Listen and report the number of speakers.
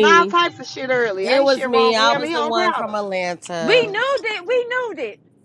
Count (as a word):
three